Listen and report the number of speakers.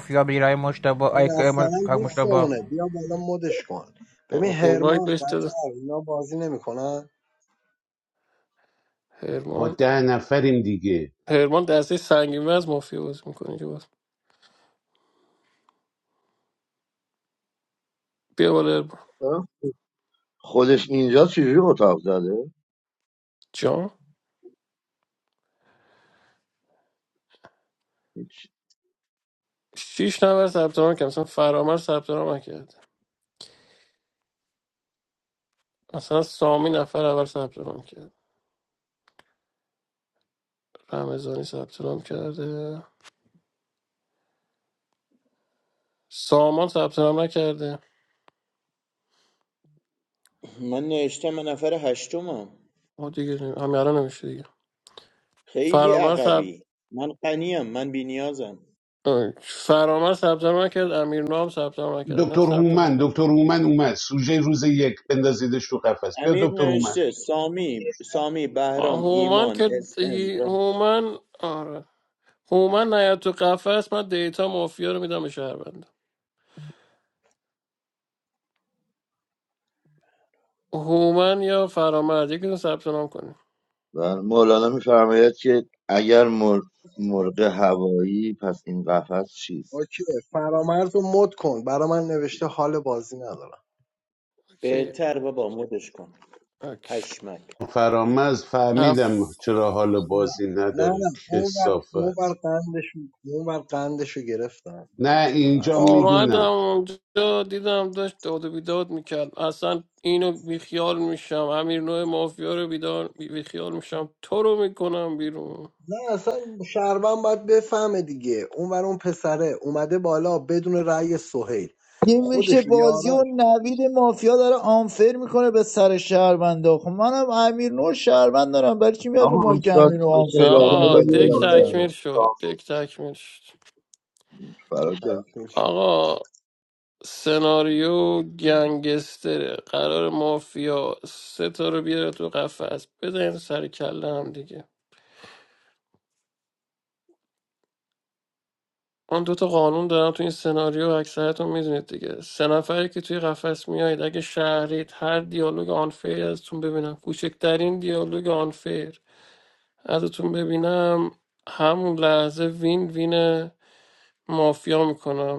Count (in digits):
7